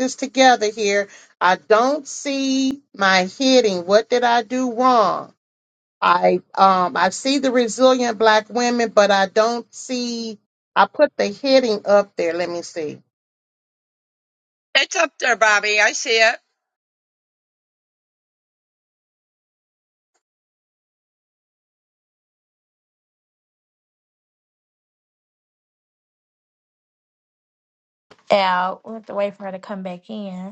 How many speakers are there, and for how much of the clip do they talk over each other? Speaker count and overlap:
3, no overlap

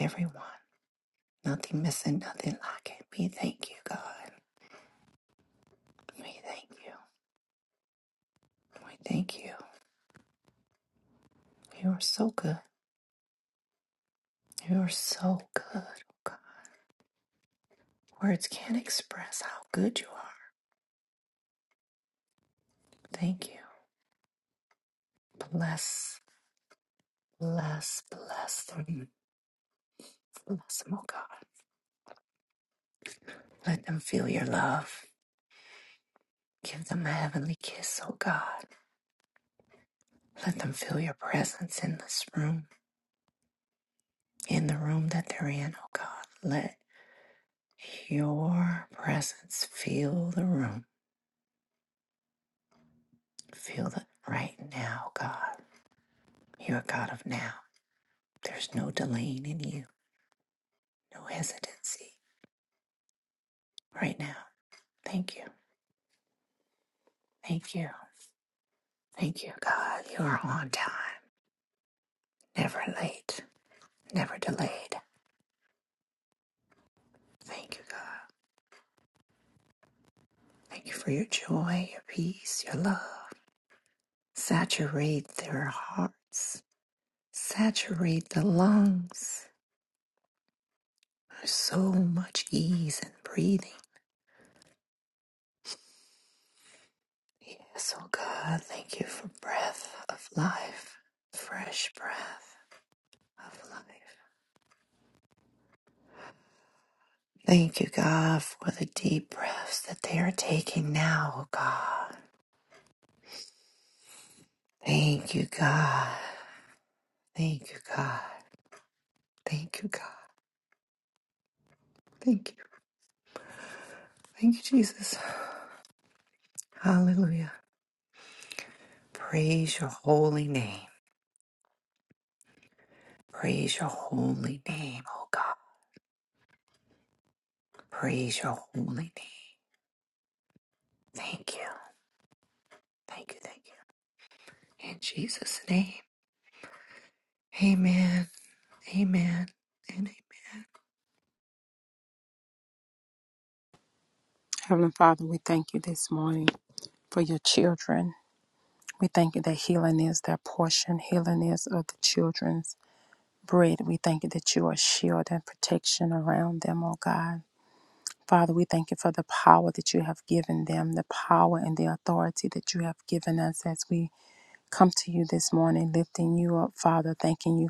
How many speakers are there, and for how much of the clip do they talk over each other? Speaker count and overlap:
2, no overlap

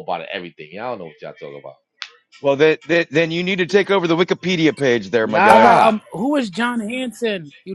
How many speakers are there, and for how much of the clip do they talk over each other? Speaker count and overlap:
3, about 10%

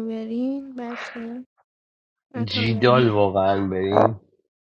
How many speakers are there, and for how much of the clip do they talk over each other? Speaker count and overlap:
2, about 17%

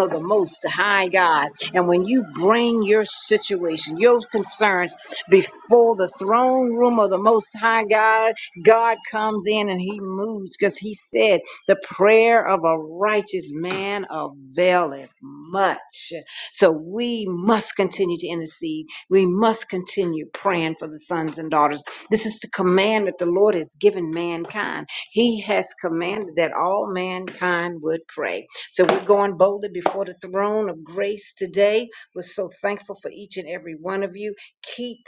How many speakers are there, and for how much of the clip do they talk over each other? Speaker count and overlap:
1, no overlap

